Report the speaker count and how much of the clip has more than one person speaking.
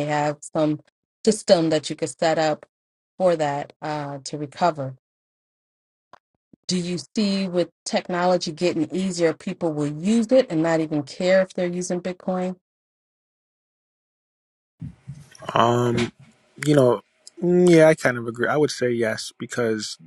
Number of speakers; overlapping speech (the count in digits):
2, no overlap